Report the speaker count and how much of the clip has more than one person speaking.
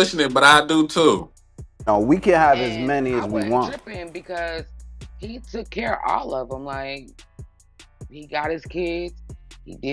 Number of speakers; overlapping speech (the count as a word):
three, about 14%